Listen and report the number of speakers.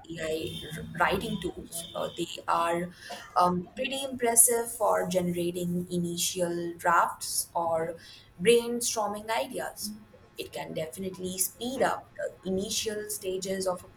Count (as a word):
one